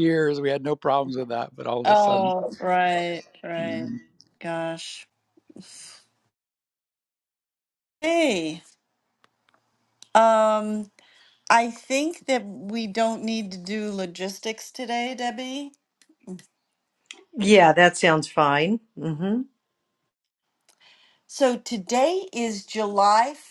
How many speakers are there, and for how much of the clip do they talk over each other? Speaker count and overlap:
3, about 2%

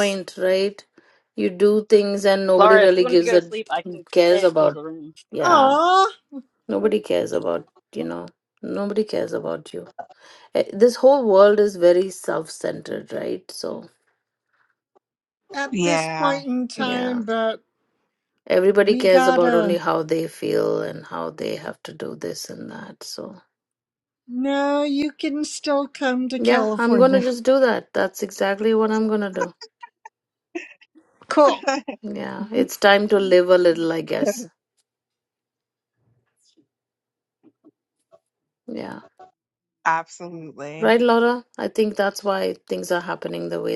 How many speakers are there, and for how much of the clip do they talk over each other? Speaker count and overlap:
4, about 11%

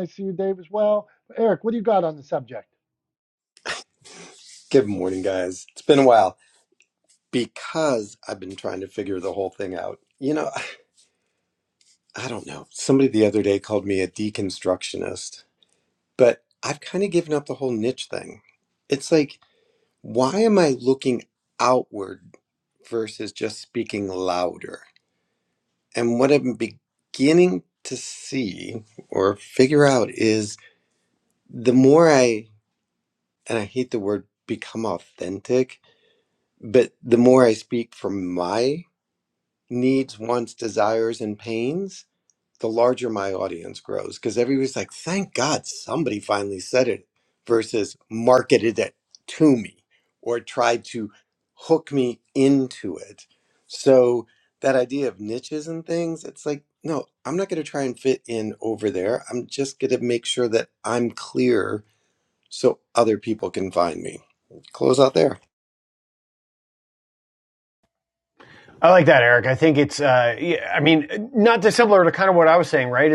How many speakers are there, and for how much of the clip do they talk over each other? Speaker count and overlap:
3, no overlap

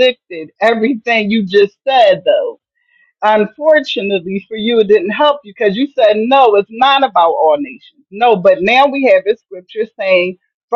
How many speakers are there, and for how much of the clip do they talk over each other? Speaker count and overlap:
1, no overlap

